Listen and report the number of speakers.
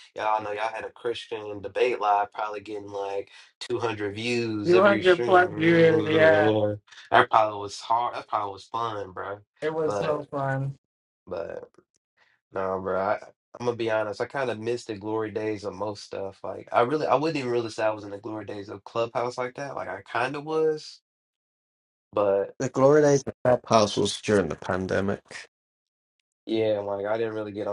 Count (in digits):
3